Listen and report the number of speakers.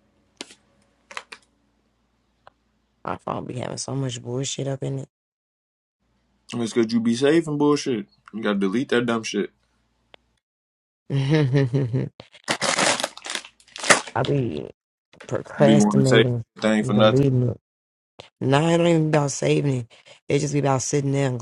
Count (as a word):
two